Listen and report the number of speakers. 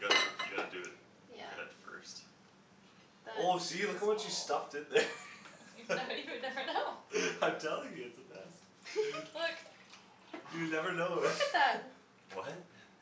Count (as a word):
four